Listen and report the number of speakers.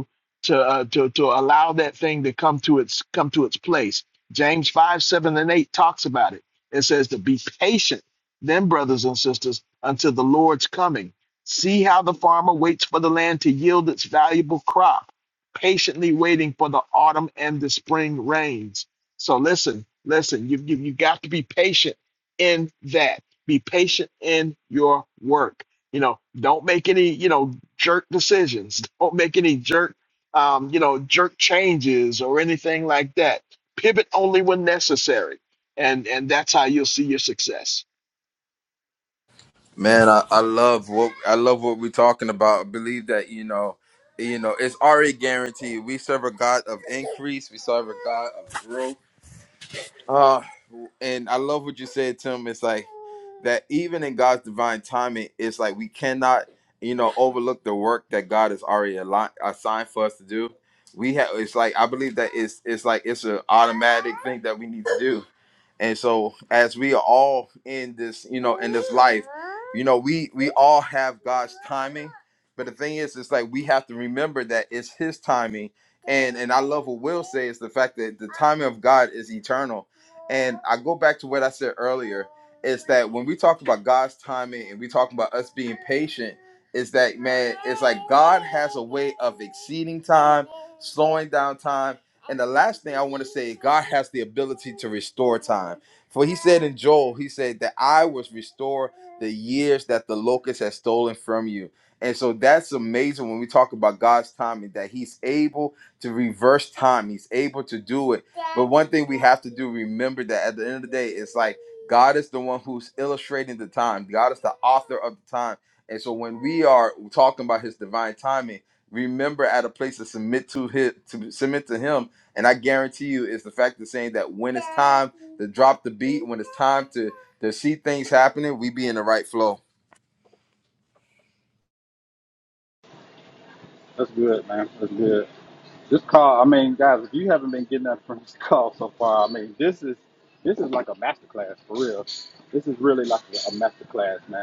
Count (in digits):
3